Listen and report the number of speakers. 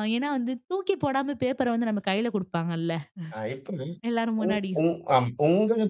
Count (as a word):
two